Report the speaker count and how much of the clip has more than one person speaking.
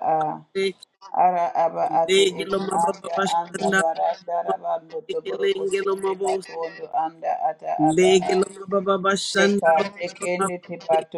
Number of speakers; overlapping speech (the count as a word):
two, about 41%